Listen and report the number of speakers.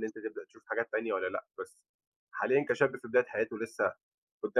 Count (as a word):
one